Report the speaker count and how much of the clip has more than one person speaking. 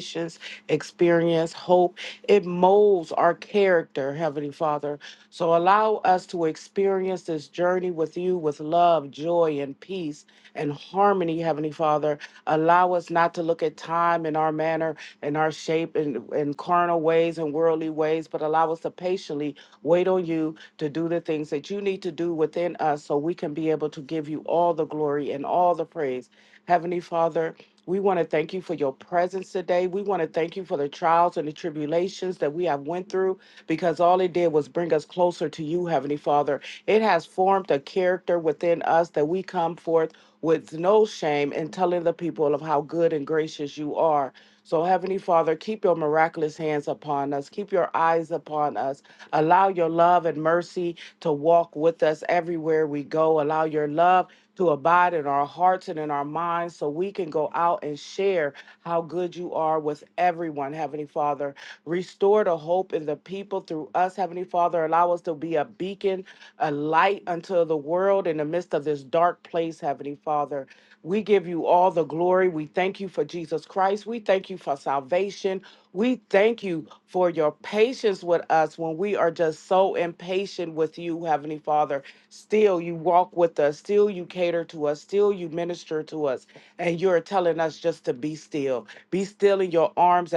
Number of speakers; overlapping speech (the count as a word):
one, no overlap